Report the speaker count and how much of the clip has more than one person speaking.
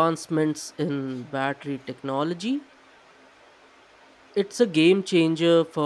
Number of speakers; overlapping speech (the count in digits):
1, no overlap